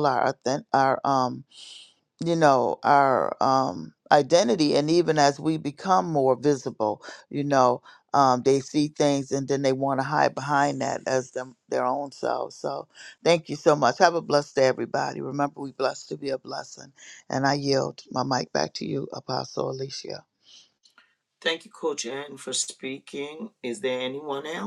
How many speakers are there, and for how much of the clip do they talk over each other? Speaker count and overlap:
2, no overlap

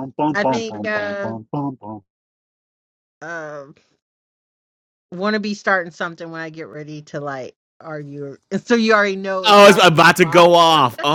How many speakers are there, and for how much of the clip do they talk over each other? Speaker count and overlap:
3, about 18%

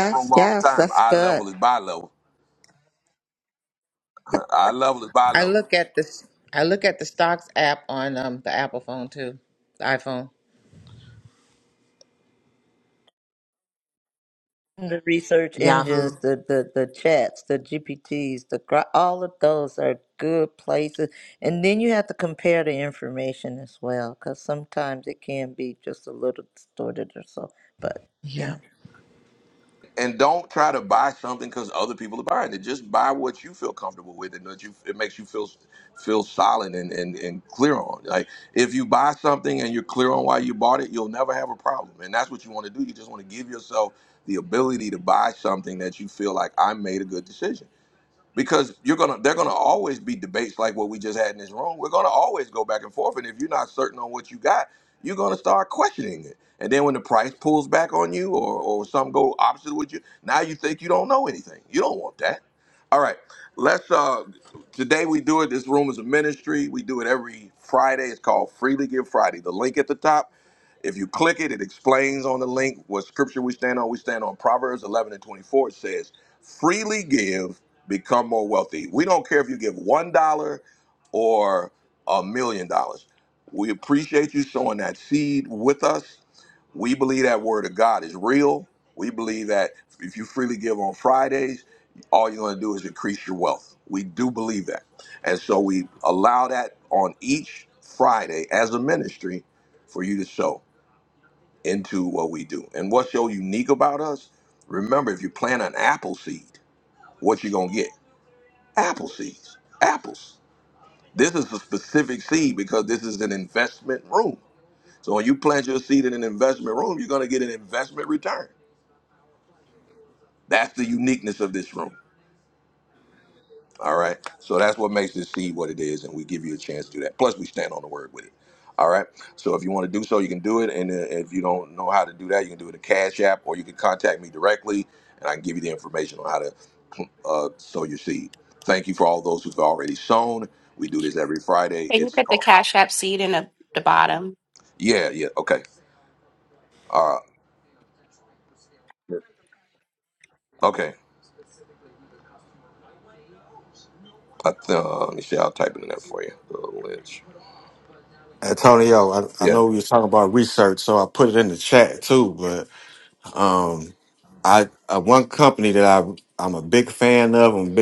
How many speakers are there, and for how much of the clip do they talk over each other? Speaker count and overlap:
5, about 2%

